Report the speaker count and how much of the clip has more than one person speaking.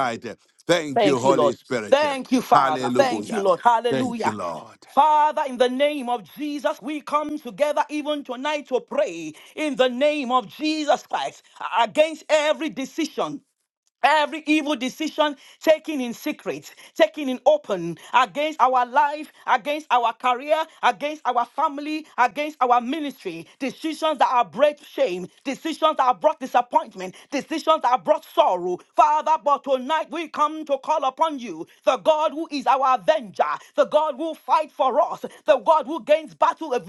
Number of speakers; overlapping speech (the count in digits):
2, about 6%